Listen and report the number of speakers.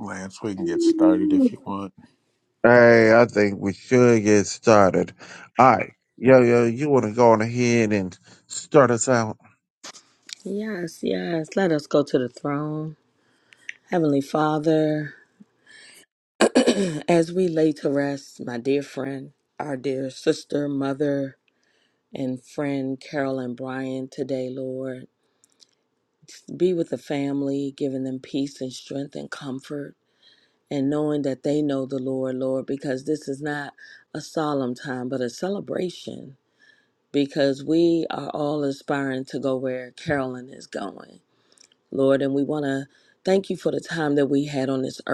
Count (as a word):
three